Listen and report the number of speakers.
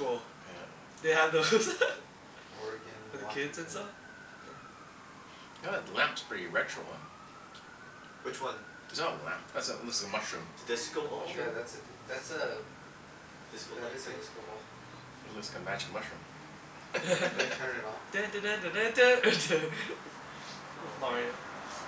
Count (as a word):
four